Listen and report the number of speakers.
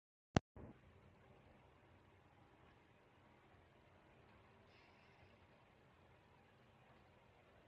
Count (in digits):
0